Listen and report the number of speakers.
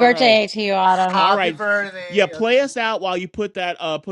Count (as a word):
three